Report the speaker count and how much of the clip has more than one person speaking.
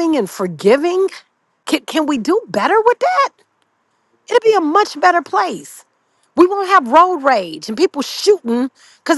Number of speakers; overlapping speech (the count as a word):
one, no overlap